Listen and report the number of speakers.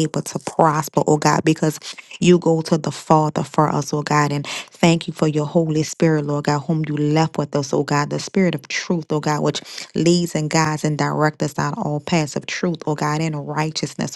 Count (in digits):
1